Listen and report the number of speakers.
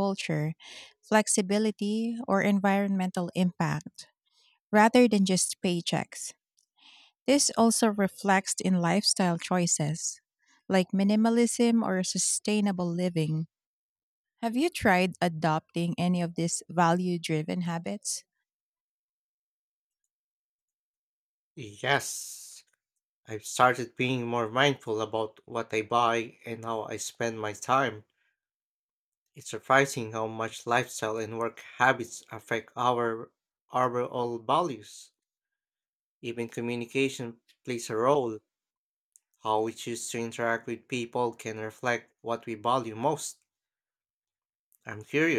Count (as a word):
two